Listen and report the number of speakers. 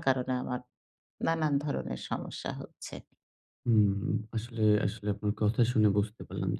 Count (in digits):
2